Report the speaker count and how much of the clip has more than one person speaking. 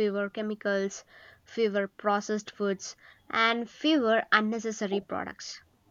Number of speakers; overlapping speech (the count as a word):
one, no overlap